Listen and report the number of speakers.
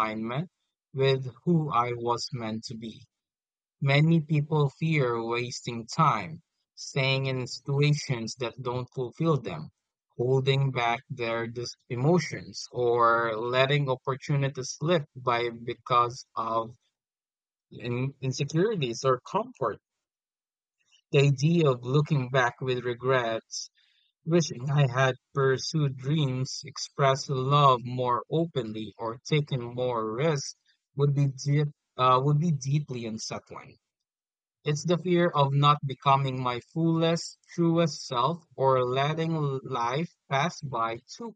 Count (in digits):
1